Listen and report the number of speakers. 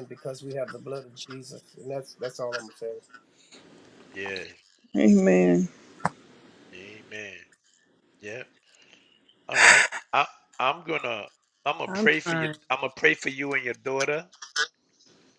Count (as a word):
three